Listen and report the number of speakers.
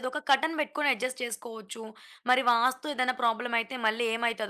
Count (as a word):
one